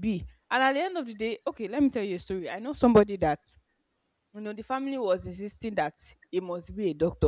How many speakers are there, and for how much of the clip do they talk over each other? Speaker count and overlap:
one, no overlap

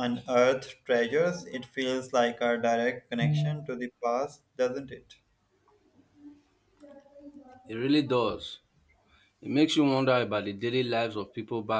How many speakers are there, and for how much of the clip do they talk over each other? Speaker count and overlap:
two, no overlap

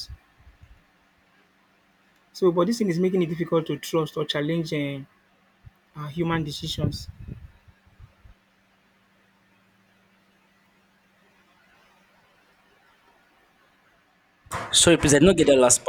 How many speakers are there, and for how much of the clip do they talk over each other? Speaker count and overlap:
two, no overlap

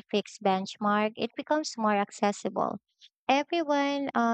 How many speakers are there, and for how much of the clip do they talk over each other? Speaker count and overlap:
one, no overlap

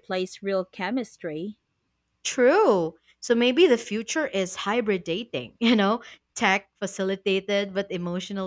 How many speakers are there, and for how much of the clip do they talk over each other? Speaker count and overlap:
two, no overlap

